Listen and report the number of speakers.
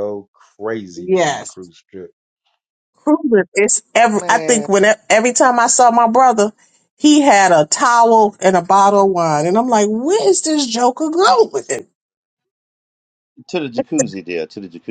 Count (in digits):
3